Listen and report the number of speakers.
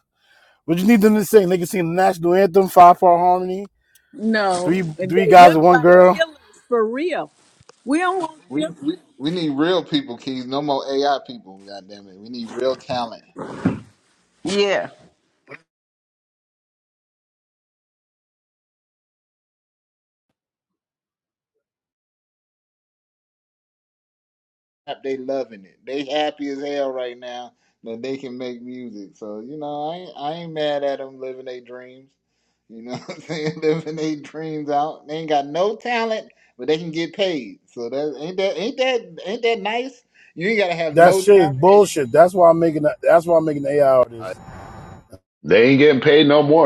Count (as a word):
four